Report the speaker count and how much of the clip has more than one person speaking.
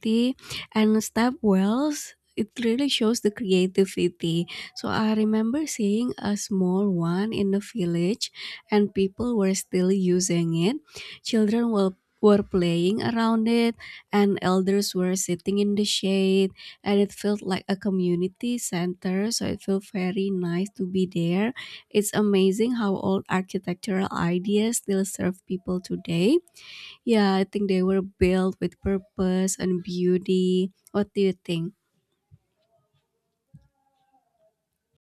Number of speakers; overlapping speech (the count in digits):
1, no overlap